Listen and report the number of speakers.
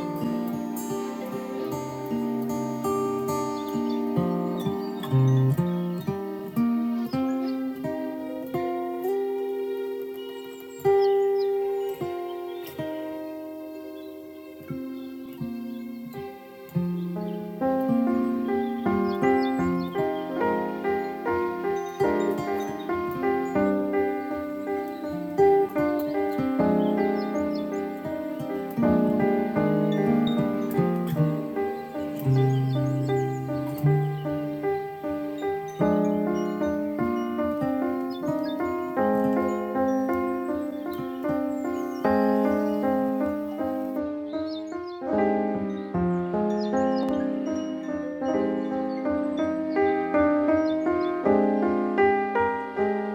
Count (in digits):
0